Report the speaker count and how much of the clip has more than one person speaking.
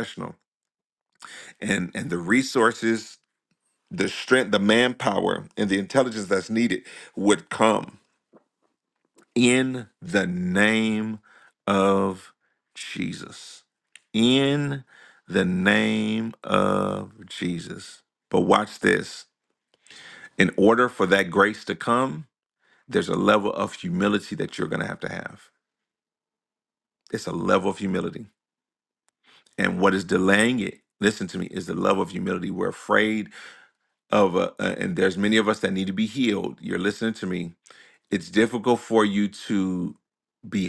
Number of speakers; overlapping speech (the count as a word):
one, no overlap